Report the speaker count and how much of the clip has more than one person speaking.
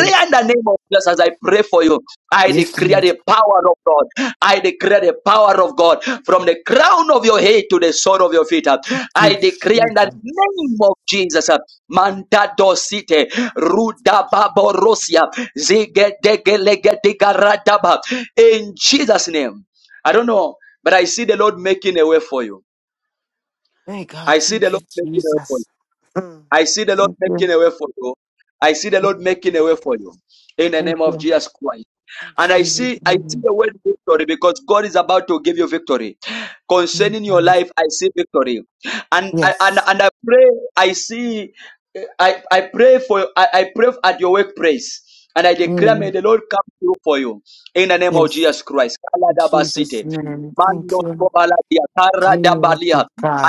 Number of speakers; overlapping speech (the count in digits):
2, about 16%